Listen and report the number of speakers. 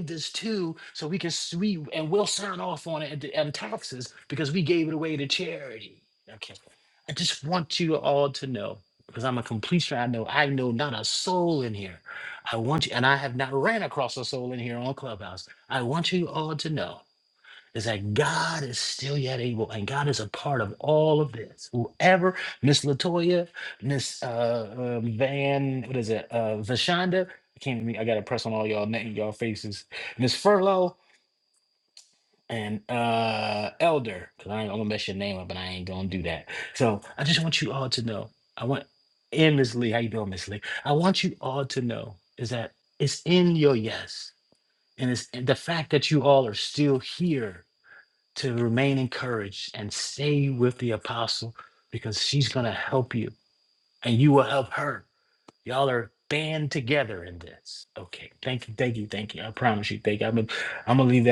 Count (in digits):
1